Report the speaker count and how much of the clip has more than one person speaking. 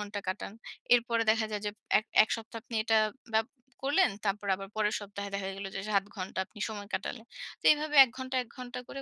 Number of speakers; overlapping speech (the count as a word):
one, no overlap